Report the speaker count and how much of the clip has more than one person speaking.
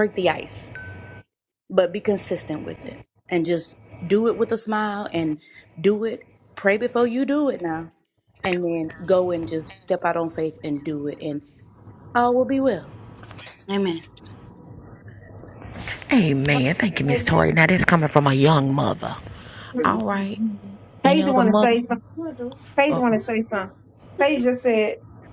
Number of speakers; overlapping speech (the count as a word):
three, about 7%